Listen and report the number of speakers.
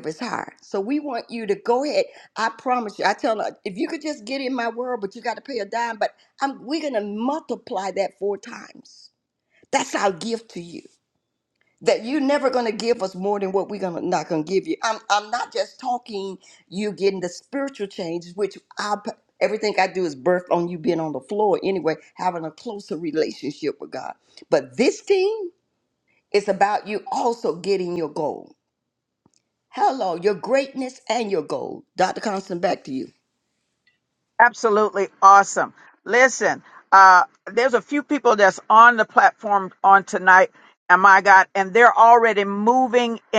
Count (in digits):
2